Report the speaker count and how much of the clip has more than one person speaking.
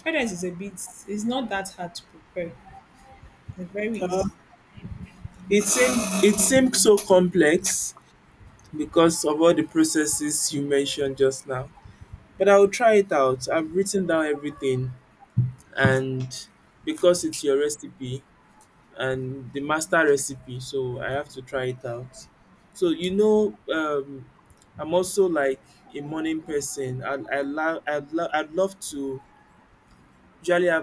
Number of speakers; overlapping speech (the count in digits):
2, about 1%